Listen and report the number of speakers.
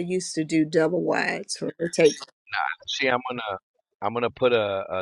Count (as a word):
two